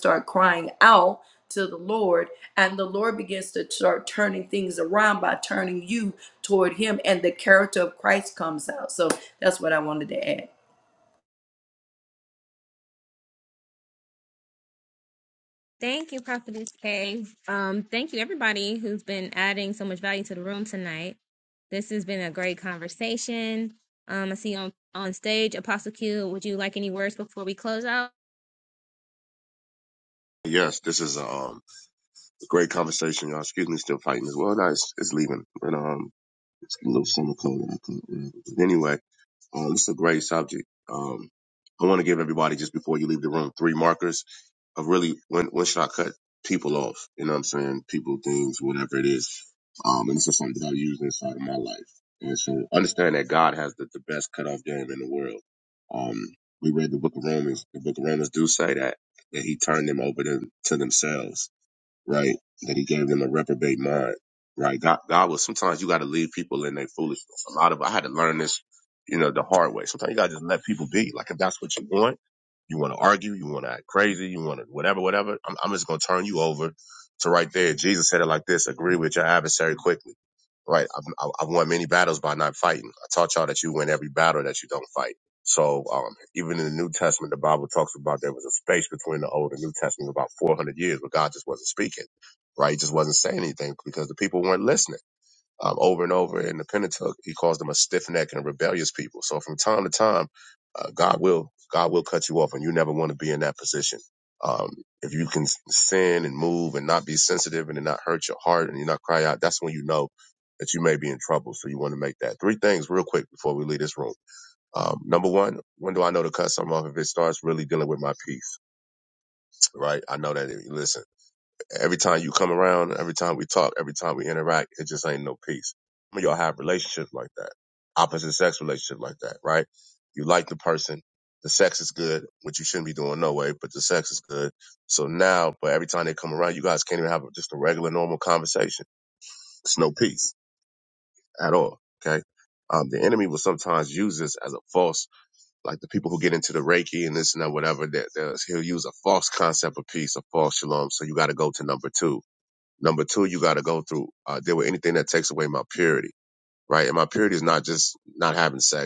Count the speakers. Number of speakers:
three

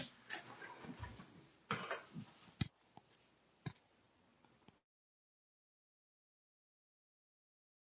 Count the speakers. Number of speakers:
zero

